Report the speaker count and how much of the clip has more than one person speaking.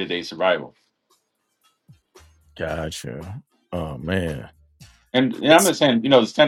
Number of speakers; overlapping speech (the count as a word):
two, about 3%